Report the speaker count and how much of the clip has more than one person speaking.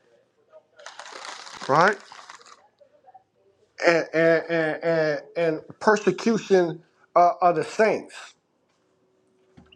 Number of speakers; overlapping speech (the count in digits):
1, no overlap